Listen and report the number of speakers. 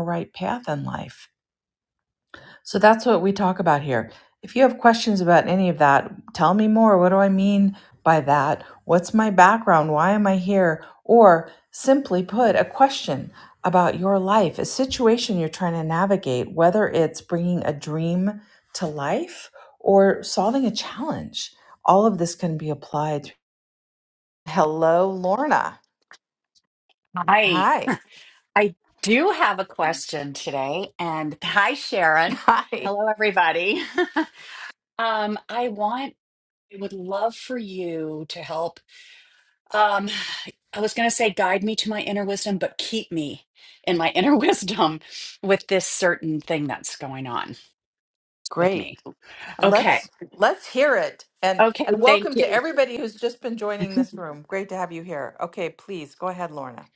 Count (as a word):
two